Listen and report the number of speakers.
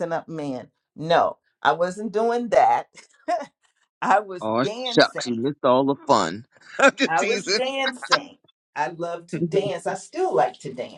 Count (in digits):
2